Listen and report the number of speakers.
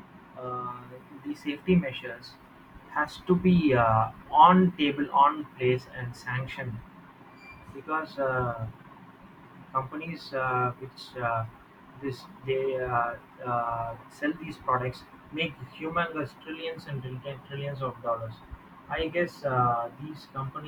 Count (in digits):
1